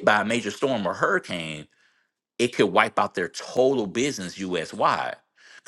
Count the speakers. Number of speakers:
1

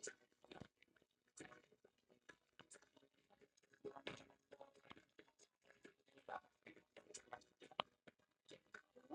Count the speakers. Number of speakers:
0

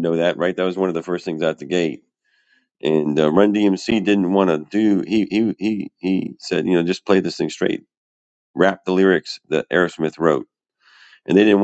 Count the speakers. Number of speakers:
1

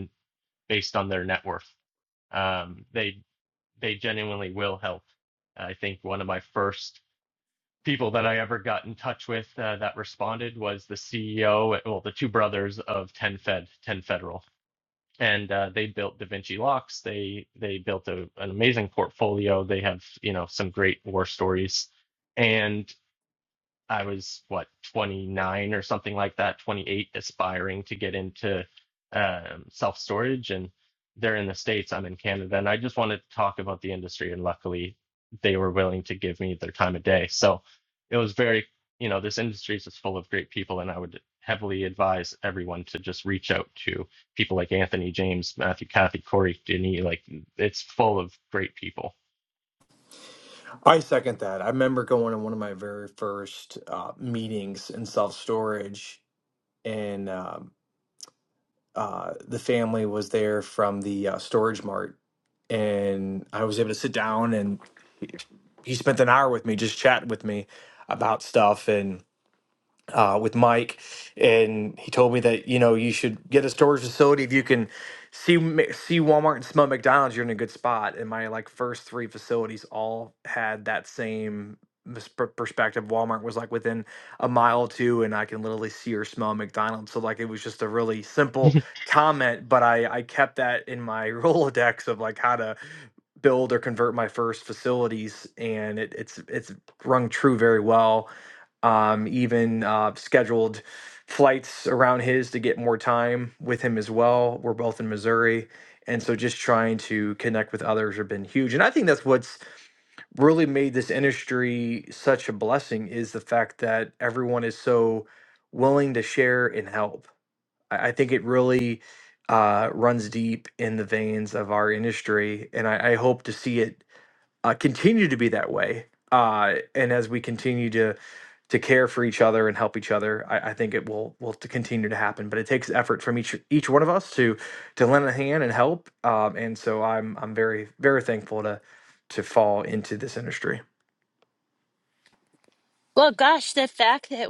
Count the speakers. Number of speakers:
3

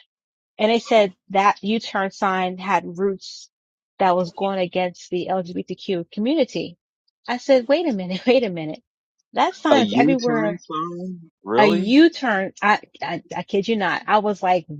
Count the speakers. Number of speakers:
2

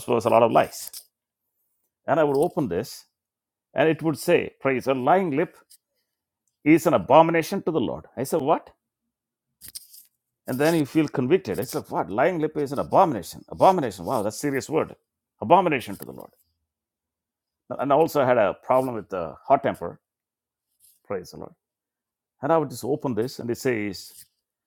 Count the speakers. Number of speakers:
1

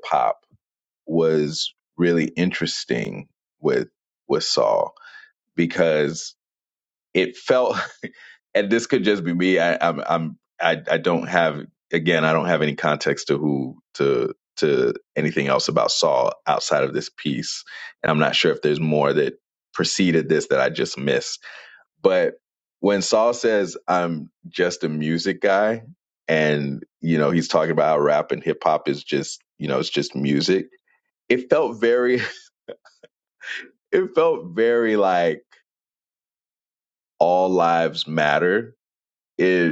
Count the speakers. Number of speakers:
1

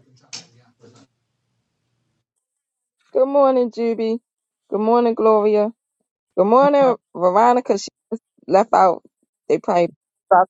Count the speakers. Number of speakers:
1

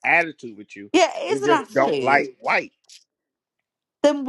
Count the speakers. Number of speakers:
2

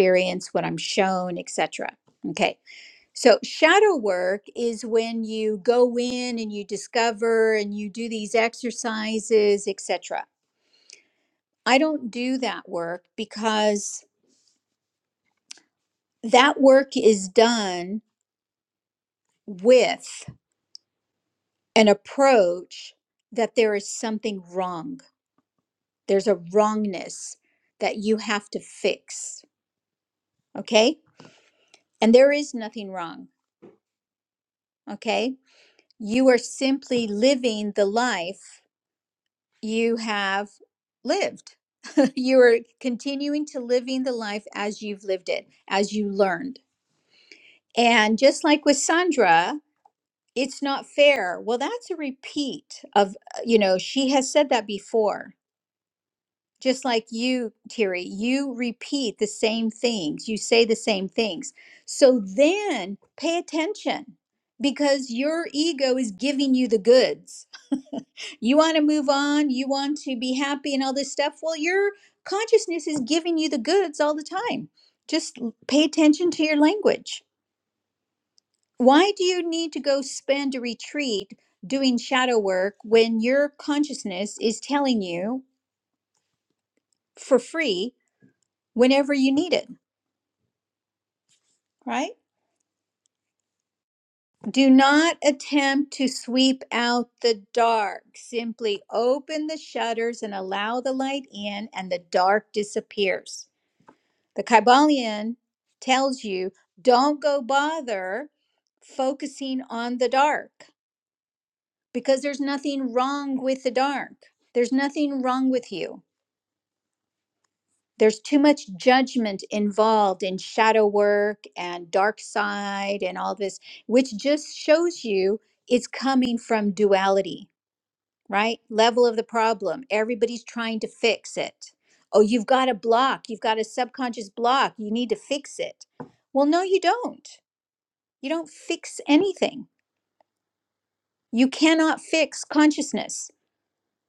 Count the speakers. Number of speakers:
1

